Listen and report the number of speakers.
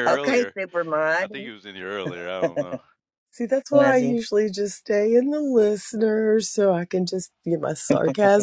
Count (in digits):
3